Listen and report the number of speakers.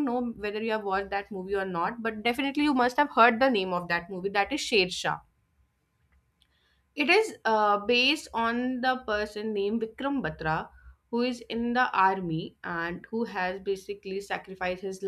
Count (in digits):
1